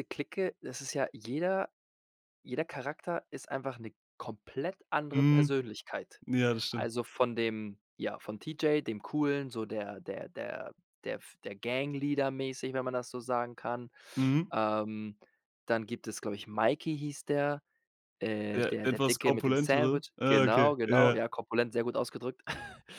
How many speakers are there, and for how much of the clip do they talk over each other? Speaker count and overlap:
two, about 14%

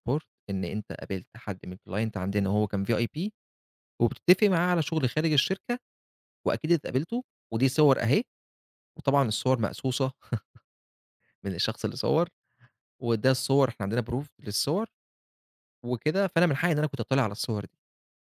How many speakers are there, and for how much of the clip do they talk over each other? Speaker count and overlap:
one, no overlap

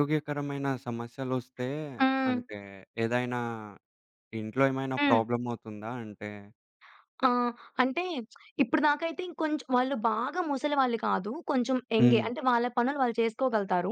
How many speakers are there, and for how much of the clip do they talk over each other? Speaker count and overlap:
two, about 5%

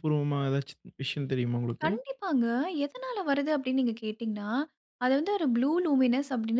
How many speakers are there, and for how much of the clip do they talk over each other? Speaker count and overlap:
two, about 2%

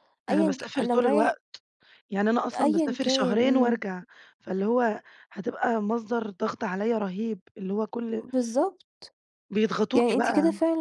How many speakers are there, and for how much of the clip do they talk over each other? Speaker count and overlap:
two, about 27%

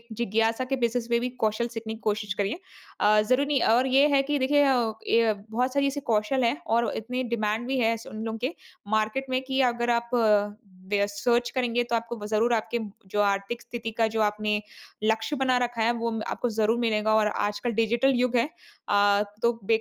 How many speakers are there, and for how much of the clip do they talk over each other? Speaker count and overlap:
one, no overlap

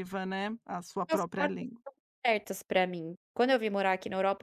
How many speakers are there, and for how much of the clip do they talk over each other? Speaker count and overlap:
two, about 13%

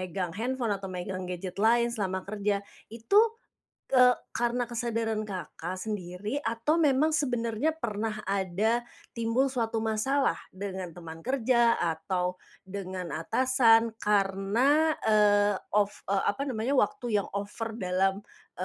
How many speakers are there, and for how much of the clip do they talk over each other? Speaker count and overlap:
one, no overlap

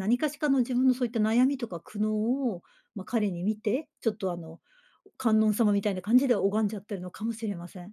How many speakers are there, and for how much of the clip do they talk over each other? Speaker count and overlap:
one, no overlap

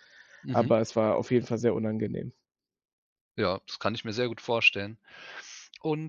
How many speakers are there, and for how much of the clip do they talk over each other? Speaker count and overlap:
two, about 4%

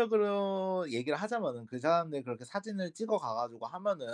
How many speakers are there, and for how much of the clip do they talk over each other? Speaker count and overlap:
one, no overlap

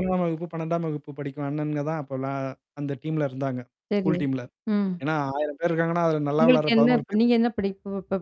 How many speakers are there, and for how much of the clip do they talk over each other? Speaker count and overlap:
two, about 12%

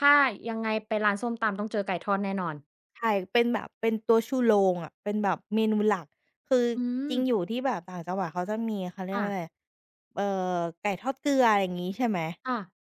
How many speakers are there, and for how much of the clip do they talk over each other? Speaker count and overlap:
two, about 3%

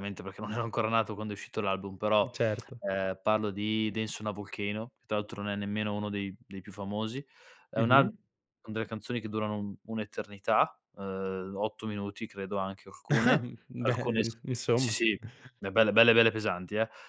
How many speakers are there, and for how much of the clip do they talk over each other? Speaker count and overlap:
two, about 8%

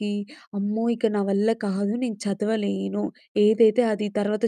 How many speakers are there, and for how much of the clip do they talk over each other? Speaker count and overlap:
one, no overlap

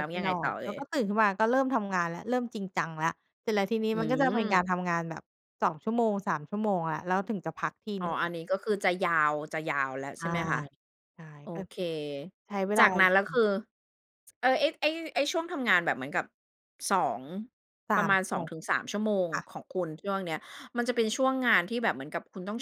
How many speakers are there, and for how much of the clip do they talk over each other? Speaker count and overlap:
two, about 12%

